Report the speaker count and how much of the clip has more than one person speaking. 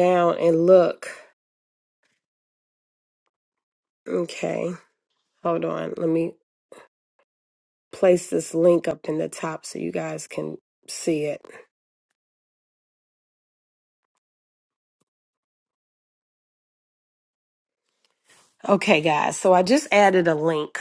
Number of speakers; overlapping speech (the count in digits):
1, no overlap